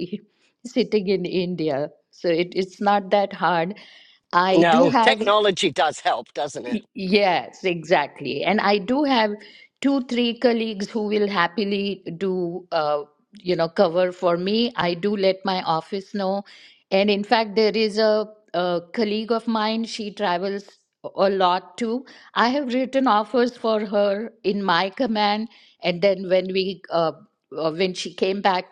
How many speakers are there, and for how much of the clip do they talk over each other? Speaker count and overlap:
2, about 3%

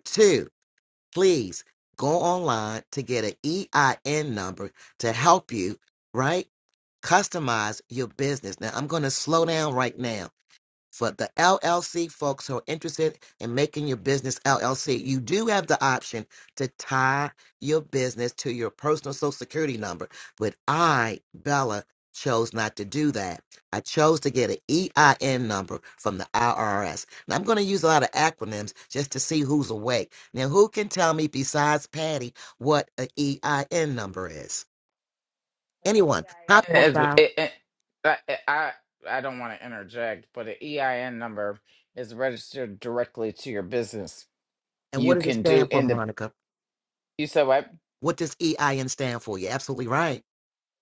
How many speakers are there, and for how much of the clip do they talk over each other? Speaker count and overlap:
2, about 3%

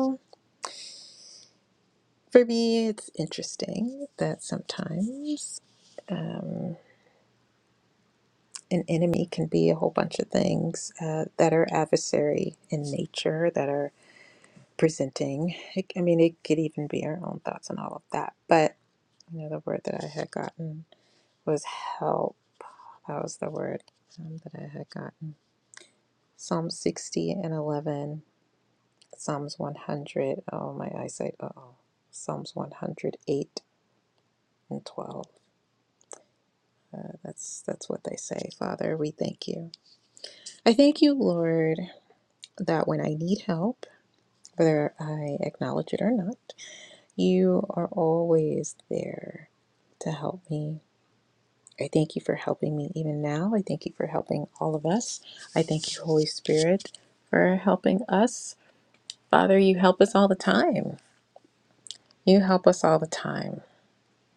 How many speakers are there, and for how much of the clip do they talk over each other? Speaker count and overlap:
1, no overlap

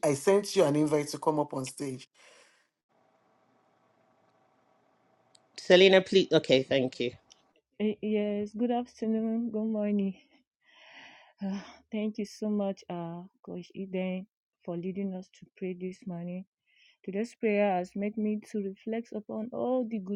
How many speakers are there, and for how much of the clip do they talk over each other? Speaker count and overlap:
3, no overlap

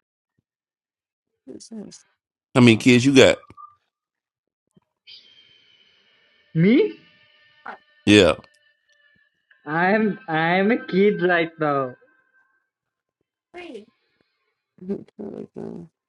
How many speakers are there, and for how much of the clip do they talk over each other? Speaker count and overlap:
3, no overlap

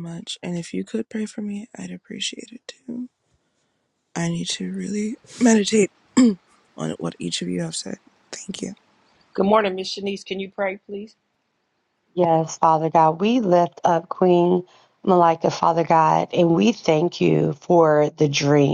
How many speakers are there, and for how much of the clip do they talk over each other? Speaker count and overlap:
3, no overlap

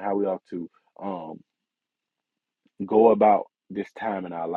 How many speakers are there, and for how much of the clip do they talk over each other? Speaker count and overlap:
1, no overlap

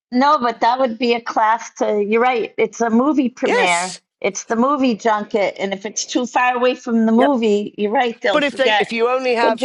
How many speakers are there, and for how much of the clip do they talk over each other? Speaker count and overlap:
2, about 15%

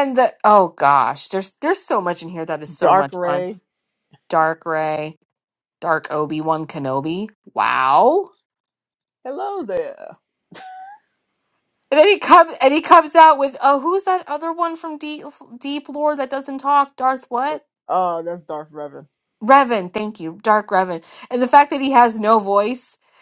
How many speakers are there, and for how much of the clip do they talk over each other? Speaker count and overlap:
2, about 3%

